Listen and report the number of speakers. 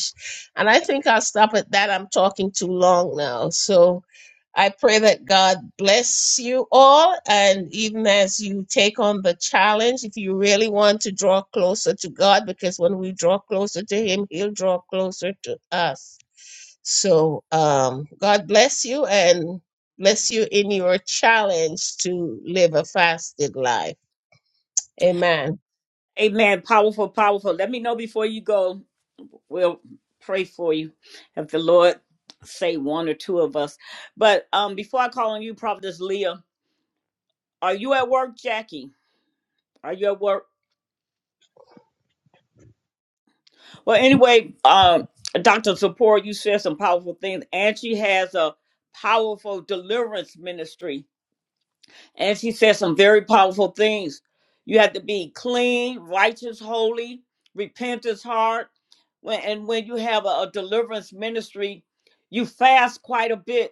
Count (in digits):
2